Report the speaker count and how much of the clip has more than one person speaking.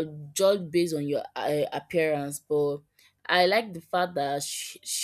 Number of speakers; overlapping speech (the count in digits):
1, no overlap